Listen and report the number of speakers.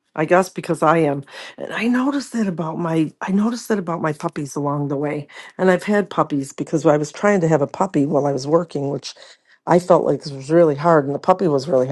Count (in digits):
1